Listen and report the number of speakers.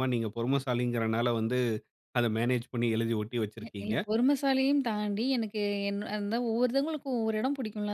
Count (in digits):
2